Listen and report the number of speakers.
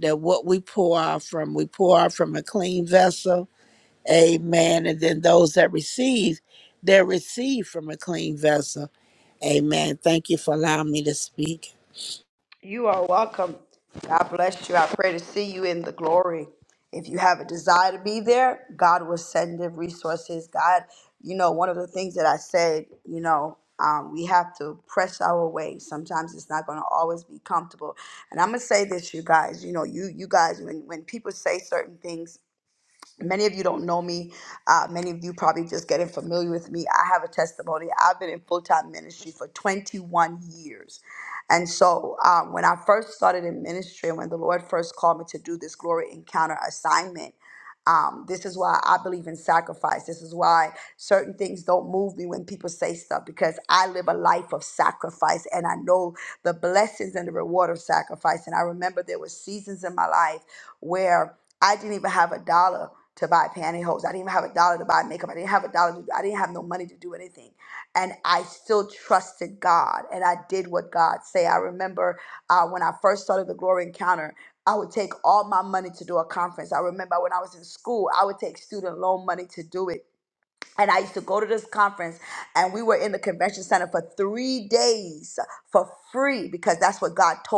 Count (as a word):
two